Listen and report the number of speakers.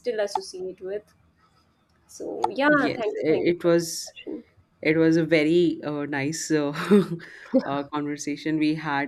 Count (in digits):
2